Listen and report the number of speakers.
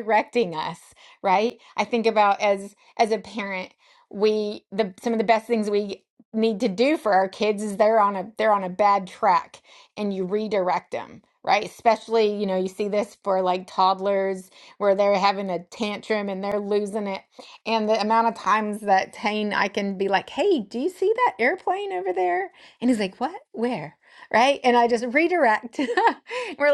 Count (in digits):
1